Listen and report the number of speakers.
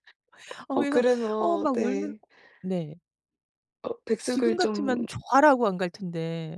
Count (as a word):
two